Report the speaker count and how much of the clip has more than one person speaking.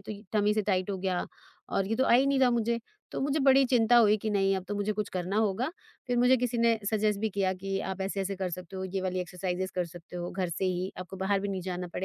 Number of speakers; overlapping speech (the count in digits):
1, no overlap